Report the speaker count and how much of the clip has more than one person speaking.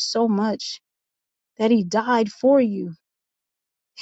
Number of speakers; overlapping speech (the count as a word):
one, no overlap